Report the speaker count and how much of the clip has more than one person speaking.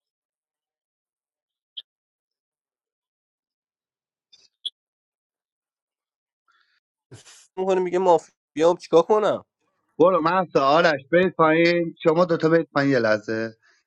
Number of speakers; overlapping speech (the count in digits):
2, no overlap